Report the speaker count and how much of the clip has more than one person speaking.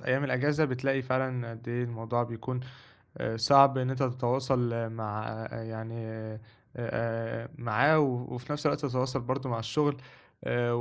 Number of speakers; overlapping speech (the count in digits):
1, no overlap